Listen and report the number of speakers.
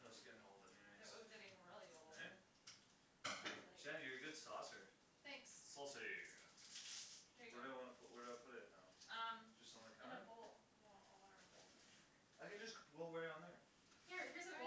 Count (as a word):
three